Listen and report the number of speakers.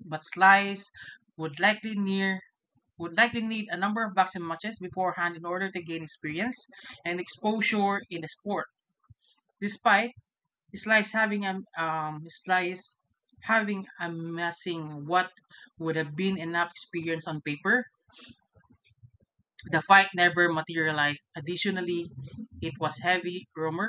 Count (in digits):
1